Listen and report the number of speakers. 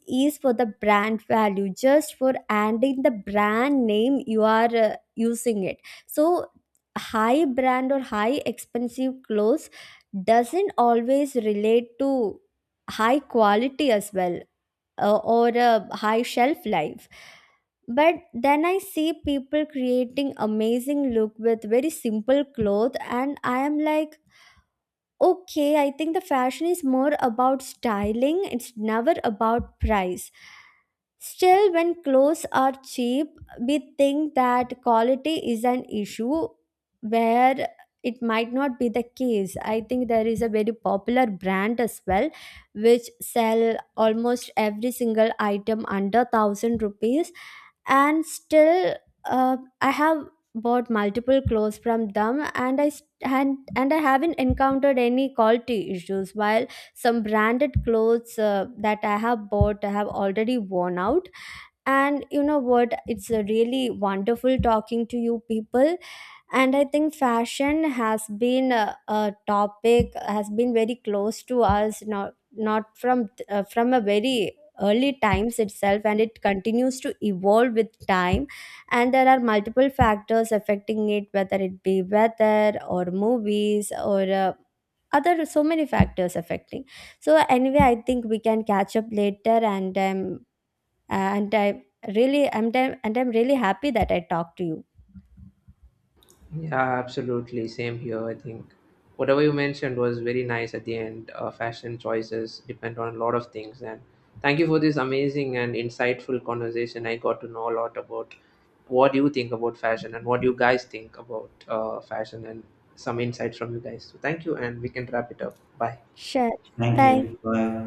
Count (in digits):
3